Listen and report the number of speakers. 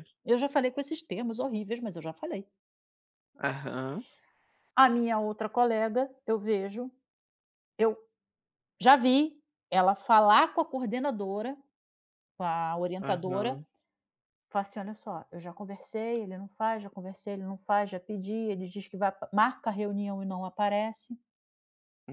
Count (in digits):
2